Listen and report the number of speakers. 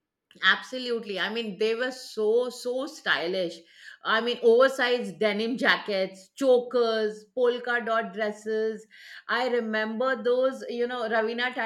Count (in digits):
1